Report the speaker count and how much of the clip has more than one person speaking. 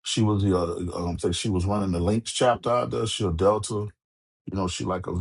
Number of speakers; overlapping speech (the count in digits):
1, no overlap